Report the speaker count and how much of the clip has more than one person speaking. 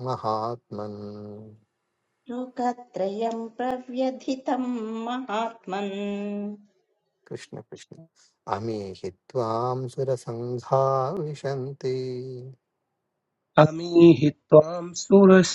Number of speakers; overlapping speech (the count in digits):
3, no overlap